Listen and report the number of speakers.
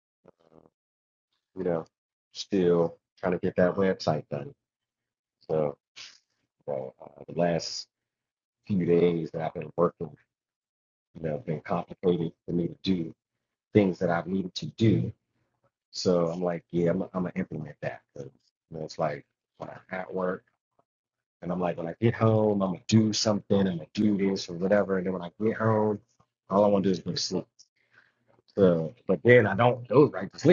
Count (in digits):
1